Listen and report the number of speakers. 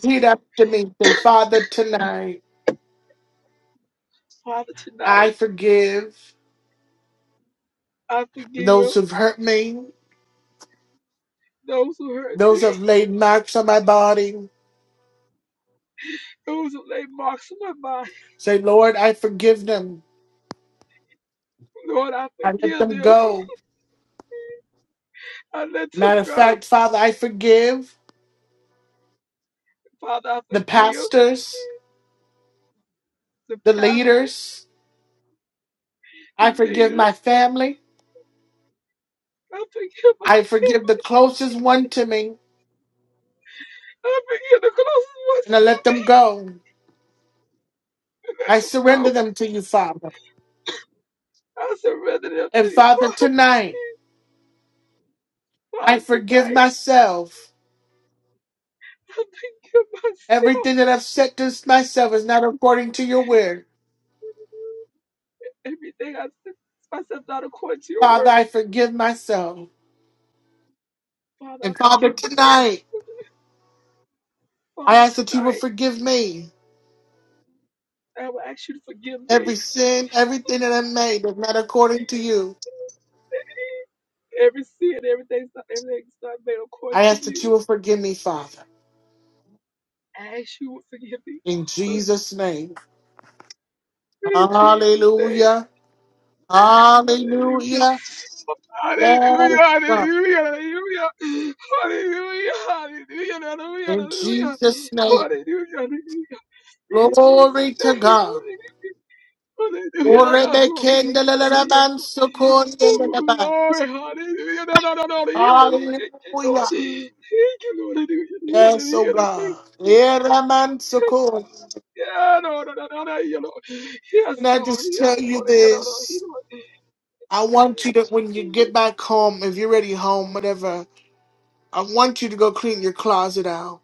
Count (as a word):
two